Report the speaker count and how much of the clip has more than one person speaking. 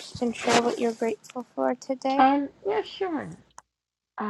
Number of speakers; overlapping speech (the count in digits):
2, about 3%